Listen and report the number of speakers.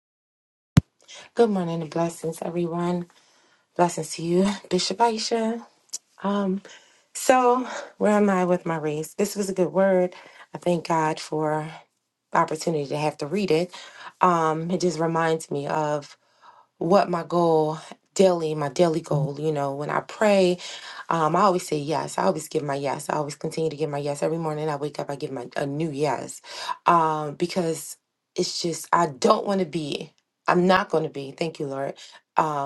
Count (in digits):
1